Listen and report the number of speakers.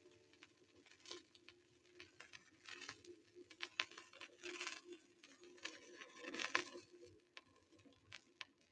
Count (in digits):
0